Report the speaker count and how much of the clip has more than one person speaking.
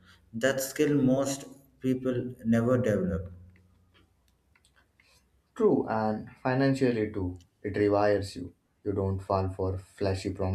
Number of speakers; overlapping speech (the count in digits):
2, no overlap